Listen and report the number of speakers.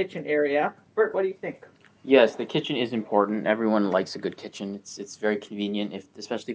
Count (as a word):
two